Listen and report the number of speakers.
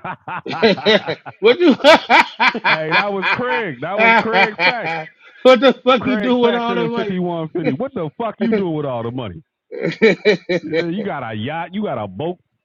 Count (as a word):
two